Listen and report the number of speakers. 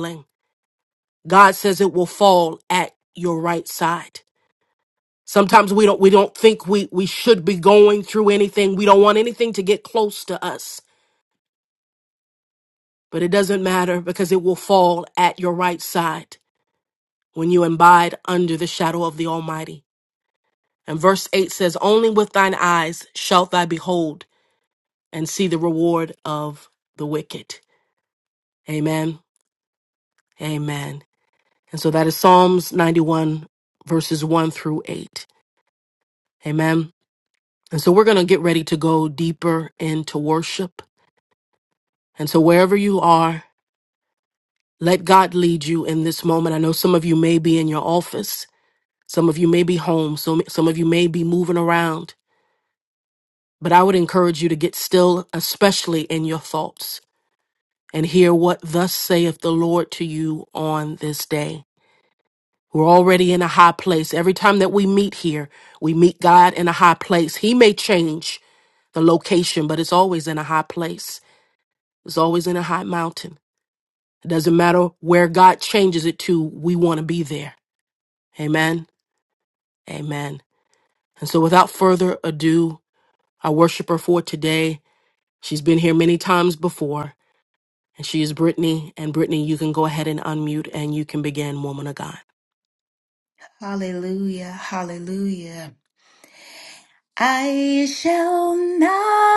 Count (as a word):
two